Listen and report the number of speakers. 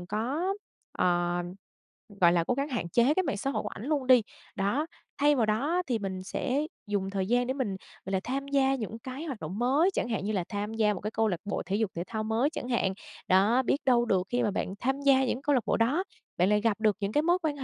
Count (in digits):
1